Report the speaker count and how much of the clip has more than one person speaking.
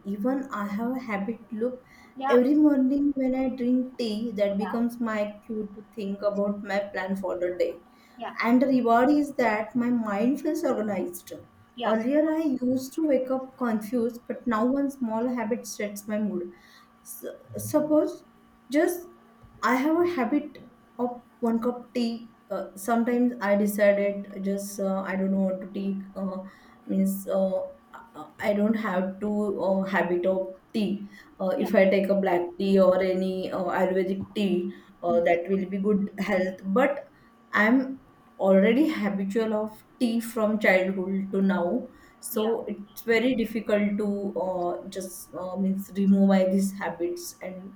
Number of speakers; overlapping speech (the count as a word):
two, about 2%